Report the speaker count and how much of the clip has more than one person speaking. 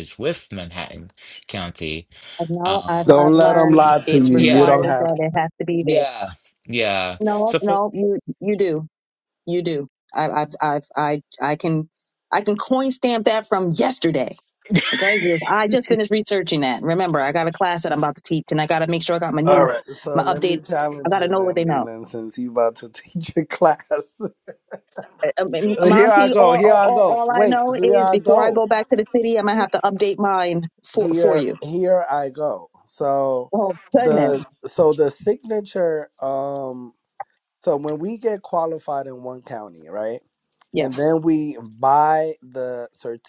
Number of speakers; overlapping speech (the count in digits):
3, about 20%